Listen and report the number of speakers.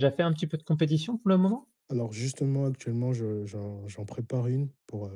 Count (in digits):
2